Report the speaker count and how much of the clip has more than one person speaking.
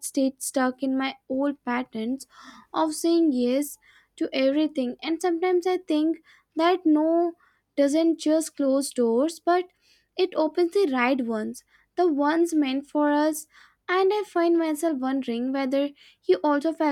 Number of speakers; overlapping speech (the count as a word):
one, no overlap